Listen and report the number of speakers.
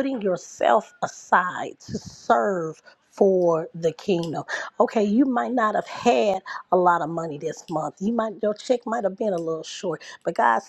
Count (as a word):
one